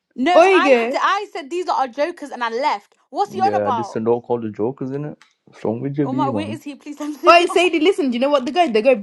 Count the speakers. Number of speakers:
3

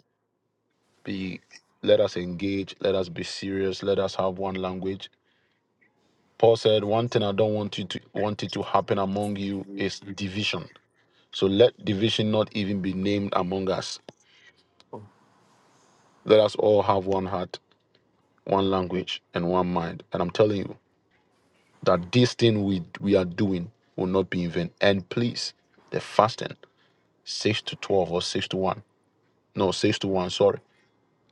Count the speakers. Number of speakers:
1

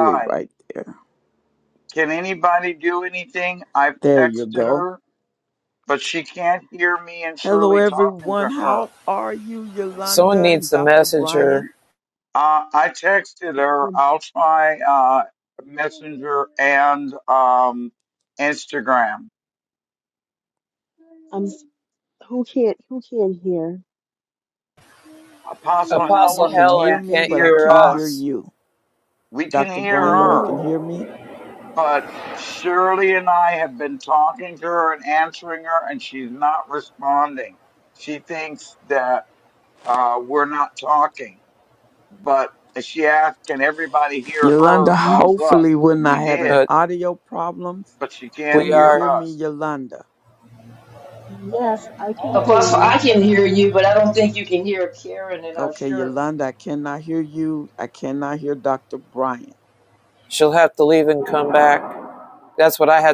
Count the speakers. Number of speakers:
5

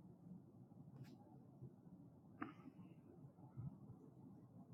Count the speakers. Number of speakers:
0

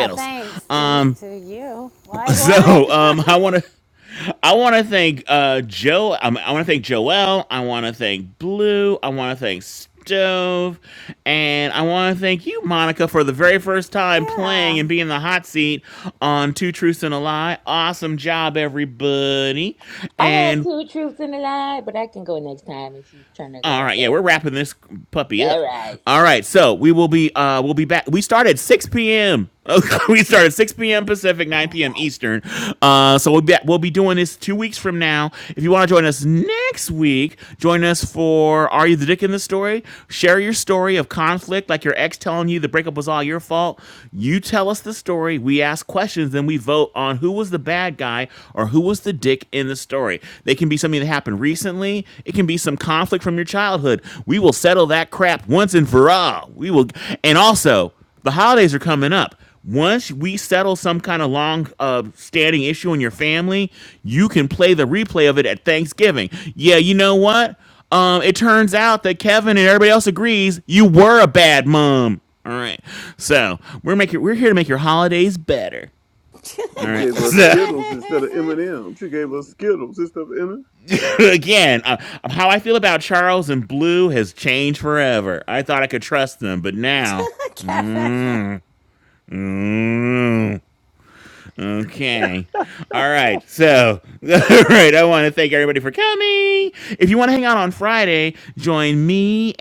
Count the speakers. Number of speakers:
4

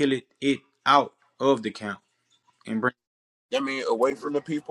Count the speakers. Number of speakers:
2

